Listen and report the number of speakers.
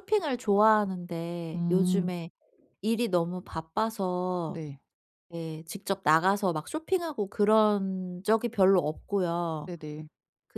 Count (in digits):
2